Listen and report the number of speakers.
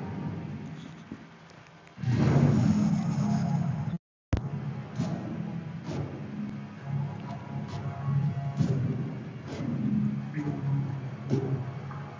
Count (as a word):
zero